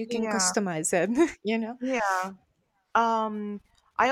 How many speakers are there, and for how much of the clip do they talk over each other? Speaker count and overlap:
two, about 11%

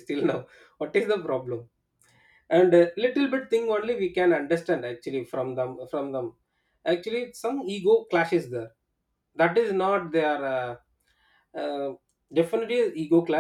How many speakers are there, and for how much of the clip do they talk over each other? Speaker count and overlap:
one, no overlap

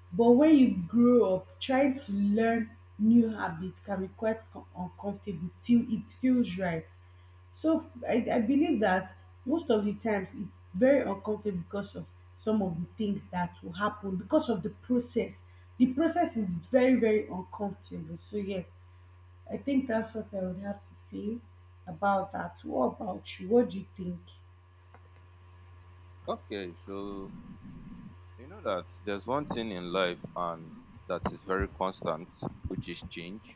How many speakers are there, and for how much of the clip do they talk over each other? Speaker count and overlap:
two, no overlap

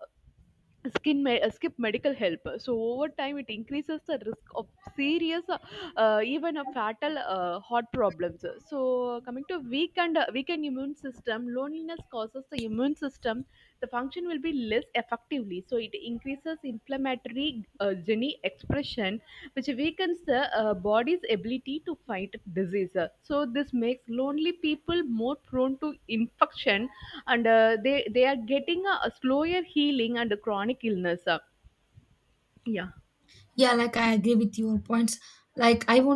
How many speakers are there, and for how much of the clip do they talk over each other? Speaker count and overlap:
two, no overlap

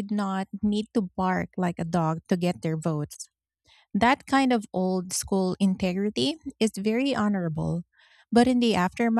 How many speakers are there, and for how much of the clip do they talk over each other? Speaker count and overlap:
one, no overlap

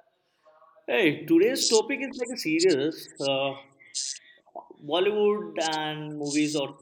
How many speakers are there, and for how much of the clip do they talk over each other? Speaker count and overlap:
one, no overlap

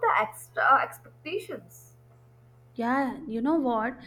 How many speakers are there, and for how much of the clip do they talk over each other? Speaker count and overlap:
two, no overlap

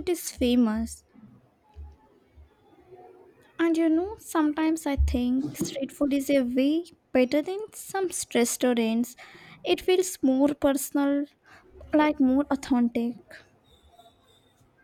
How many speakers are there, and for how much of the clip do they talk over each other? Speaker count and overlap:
one, no overlap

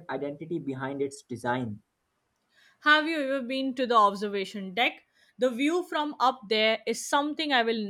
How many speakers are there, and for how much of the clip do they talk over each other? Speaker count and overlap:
two, no overlap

